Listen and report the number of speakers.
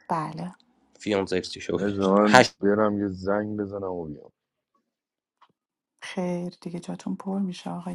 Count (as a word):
three